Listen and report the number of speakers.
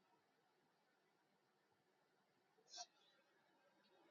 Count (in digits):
0